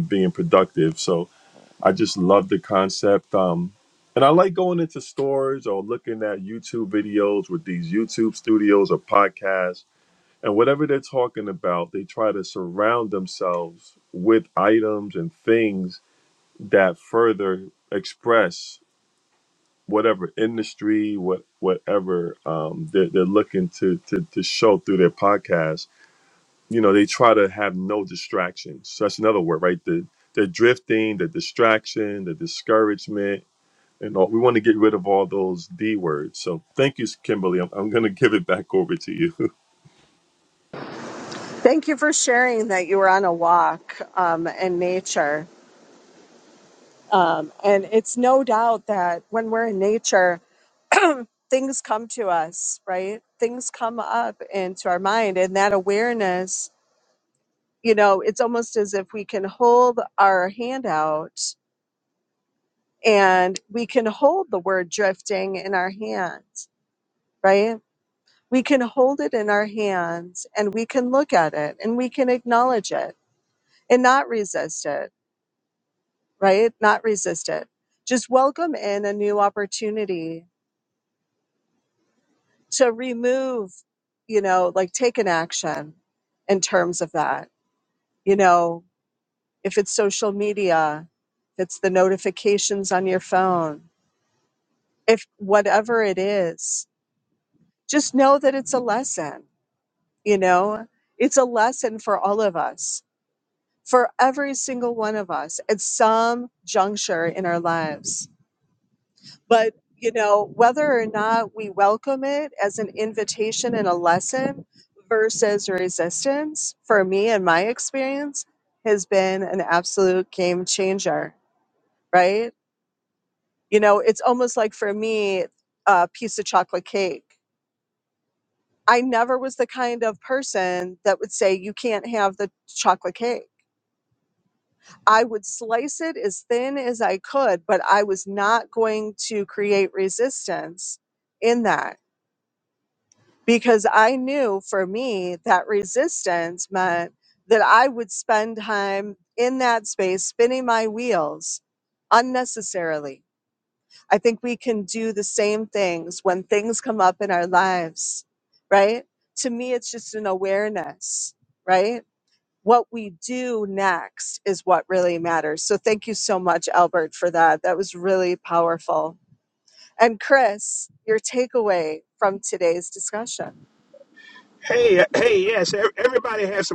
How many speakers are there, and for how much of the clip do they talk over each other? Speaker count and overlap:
three, no overlap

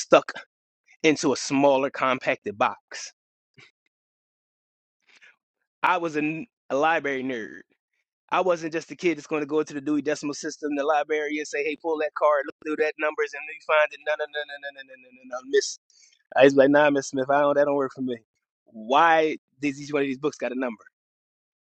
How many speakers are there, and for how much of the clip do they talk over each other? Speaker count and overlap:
one, no overlap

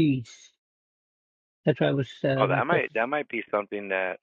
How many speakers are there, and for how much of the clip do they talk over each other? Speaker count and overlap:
two, about 10%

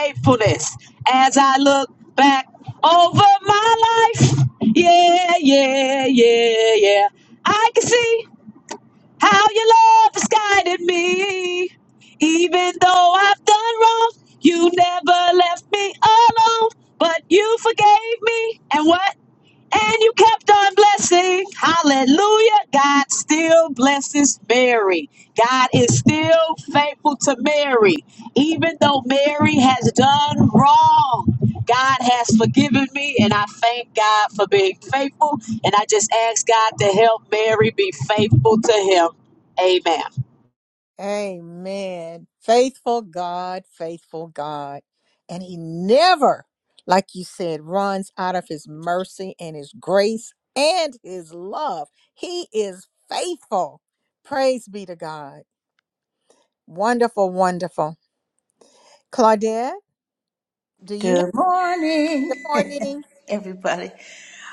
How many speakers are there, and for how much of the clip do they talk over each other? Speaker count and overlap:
three, about 1%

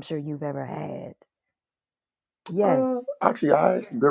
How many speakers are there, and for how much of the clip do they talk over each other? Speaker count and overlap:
two, about 5%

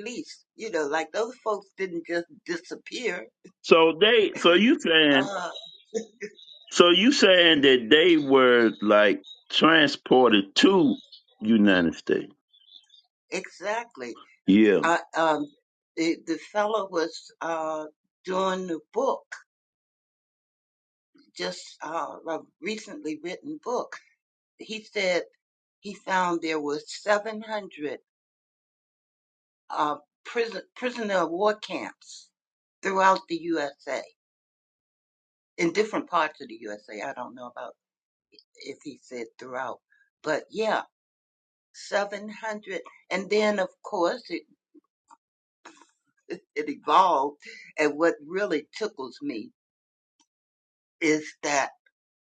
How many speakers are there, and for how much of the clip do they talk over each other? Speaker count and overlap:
two, under 1%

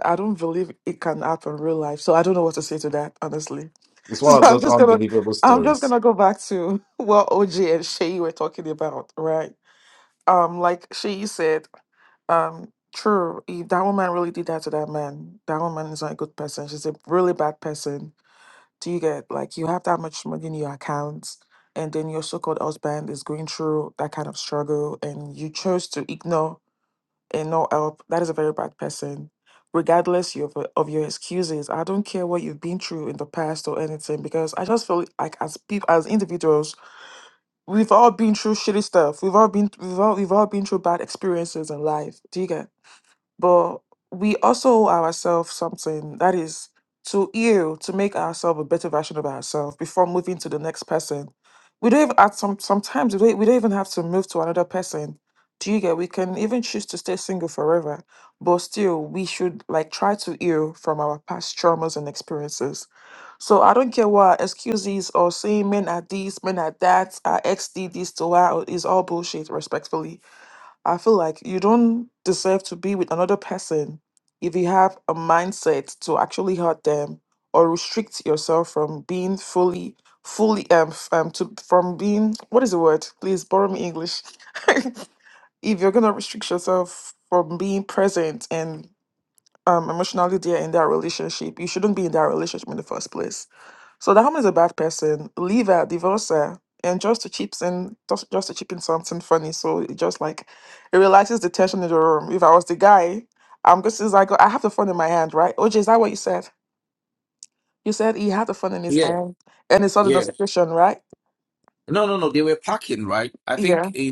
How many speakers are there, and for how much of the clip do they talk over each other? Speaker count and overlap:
three, about 2%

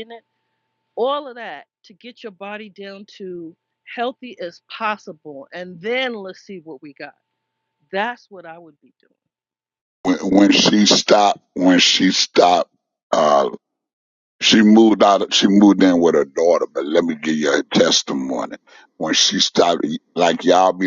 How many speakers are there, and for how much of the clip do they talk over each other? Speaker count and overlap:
two, no overlap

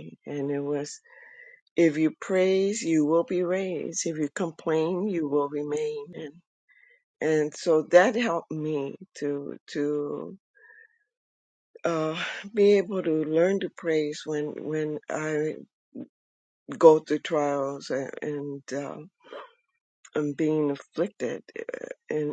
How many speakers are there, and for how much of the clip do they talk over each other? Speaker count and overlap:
one, no overlap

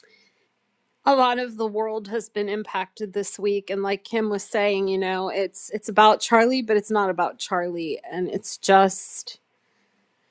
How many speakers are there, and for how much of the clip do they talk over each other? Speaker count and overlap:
one, no overlap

